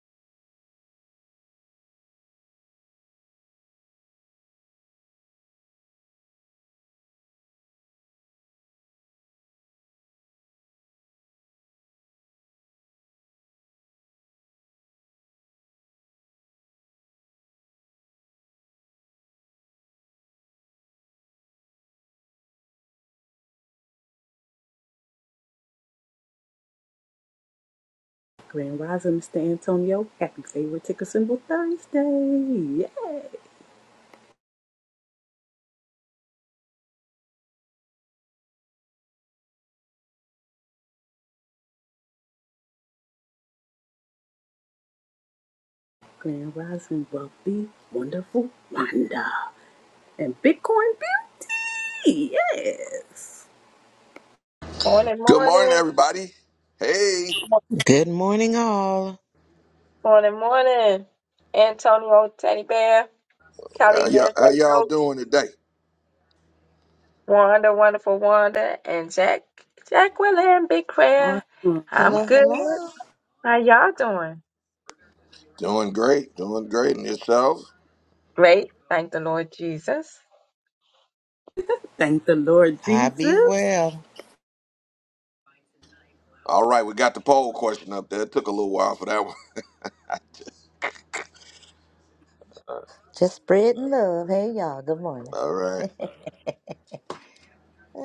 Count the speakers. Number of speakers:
5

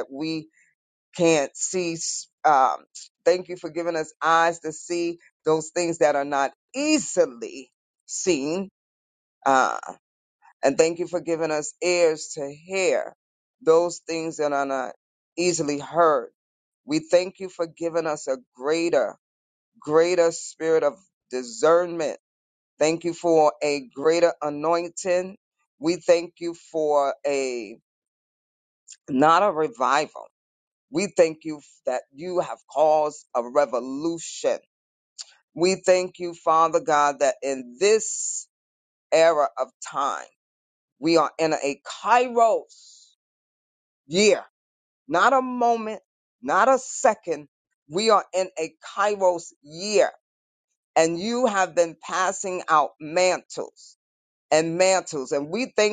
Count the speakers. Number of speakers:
1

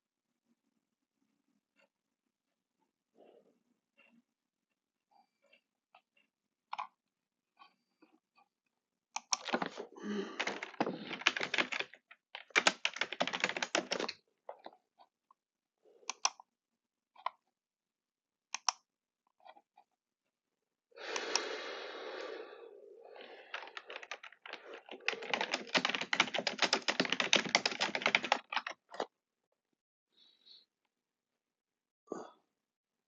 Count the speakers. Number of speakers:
0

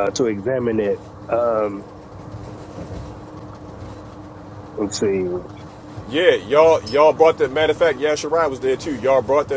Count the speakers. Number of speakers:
2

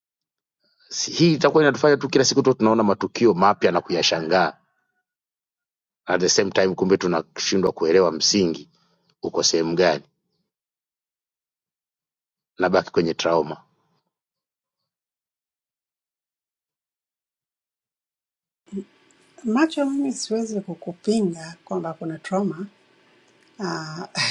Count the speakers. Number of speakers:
2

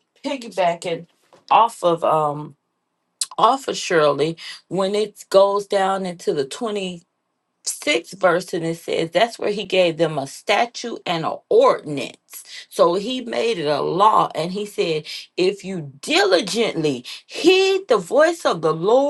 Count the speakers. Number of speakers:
1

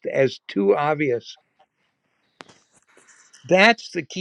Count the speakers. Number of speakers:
1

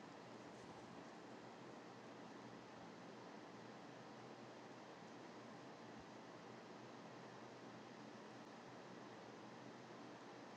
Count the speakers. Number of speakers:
0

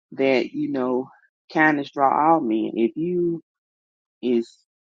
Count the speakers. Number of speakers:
1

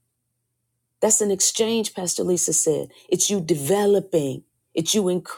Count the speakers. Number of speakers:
1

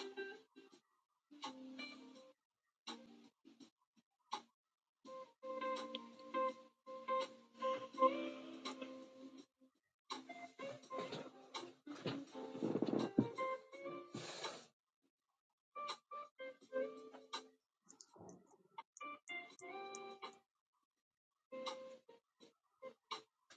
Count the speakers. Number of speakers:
0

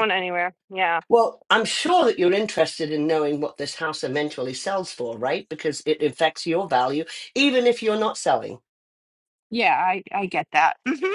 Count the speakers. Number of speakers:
2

